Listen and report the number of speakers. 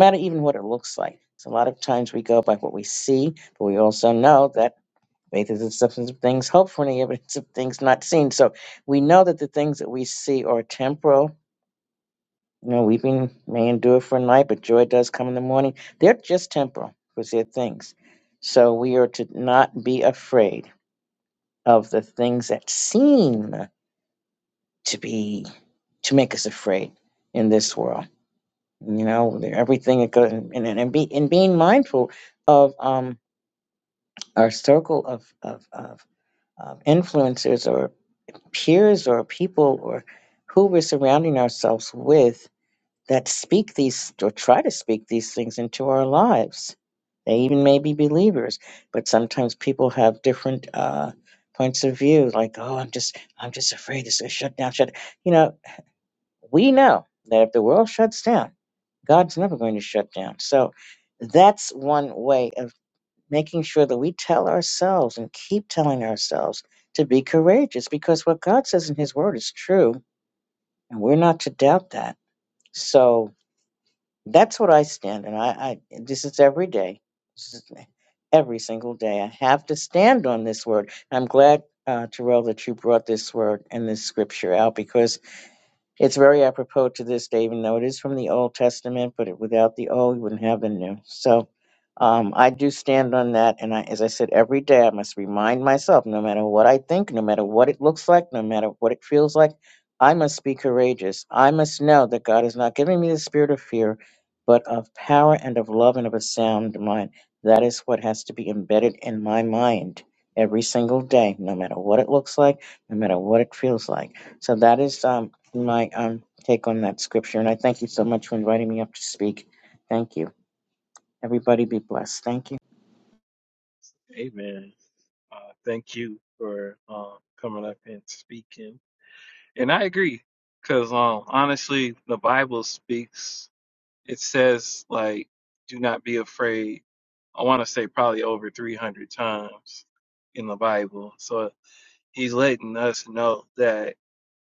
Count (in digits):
2